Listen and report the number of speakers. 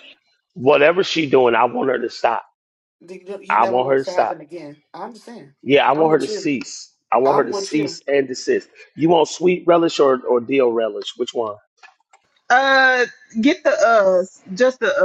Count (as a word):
three